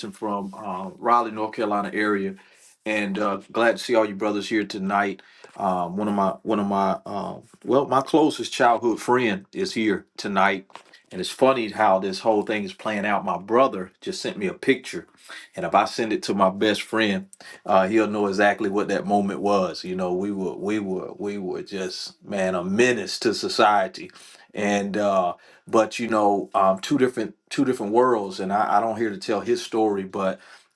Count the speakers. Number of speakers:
one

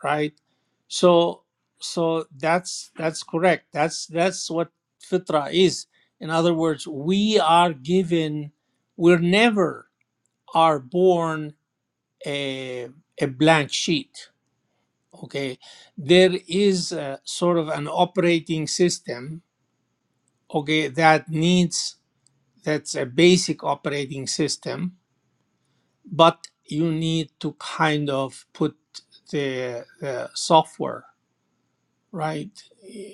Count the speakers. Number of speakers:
one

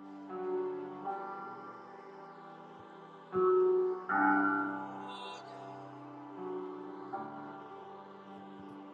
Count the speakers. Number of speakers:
zero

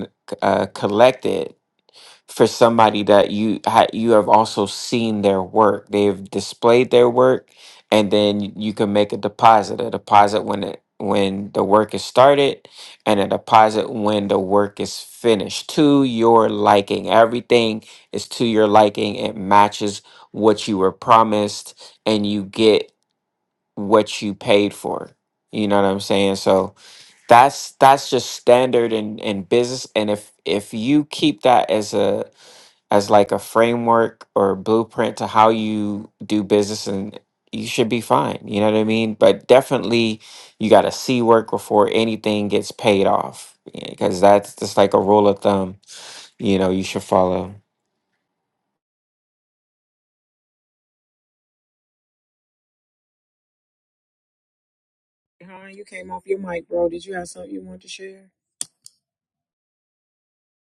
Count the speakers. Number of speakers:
two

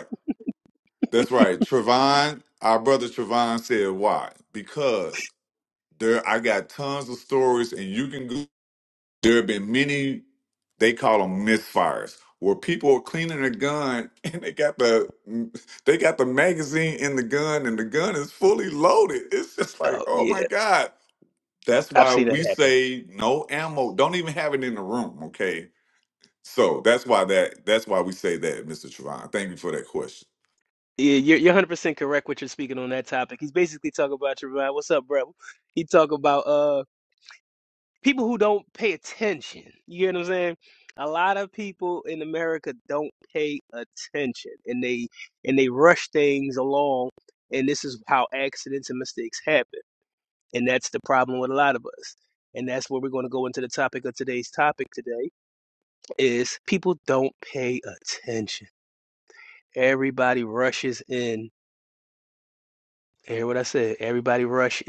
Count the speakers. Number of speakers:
two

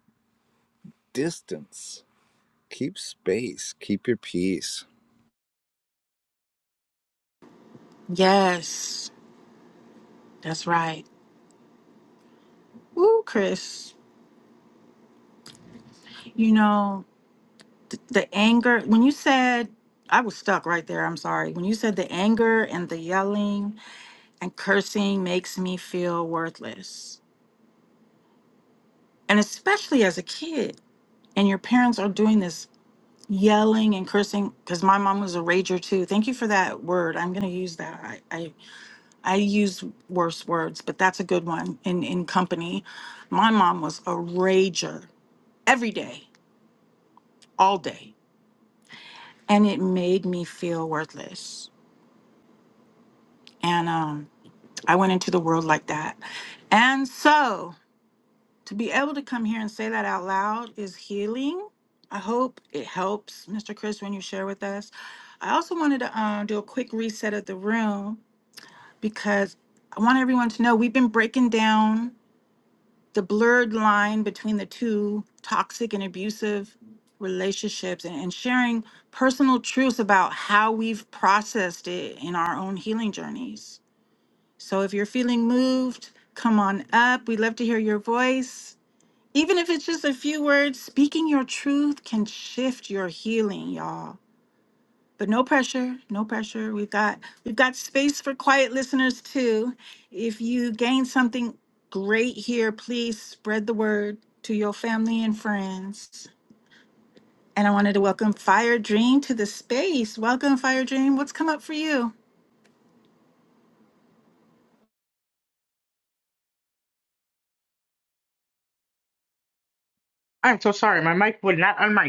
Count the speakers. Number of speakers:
three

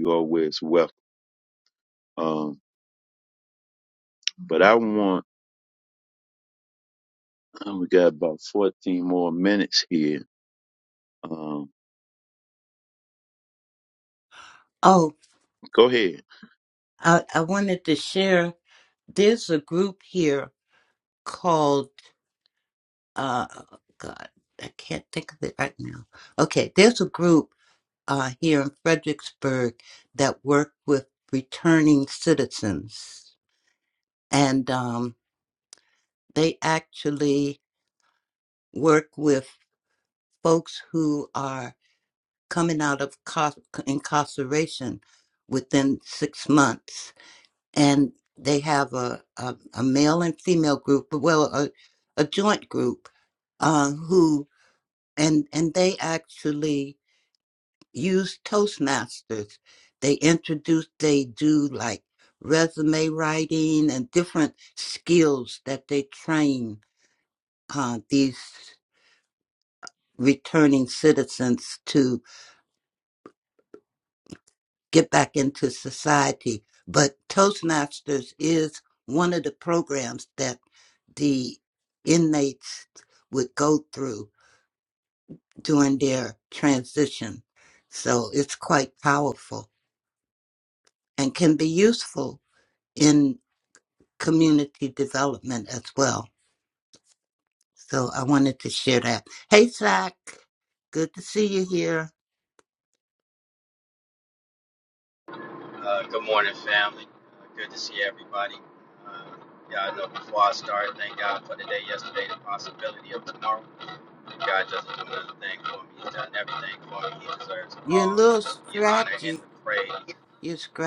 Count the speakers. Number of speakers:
three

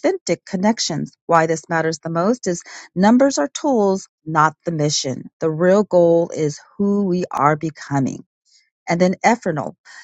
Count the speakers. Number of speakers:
one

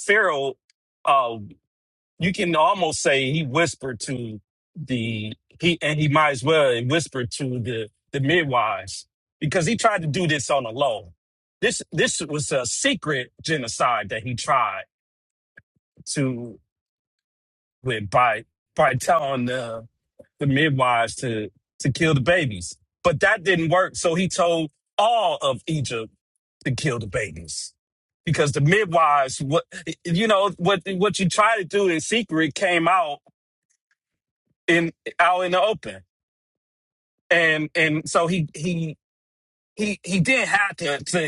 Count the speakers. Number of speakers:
one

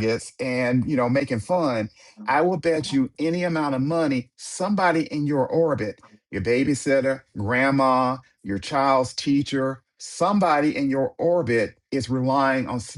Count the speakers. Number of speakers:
one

